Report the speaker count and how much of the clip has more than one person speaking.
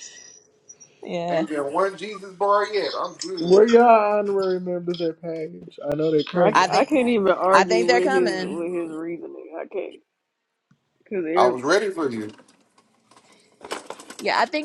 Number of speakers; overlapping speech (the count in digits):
4, about 15%